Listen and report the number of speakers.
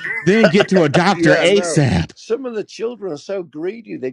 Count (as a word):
two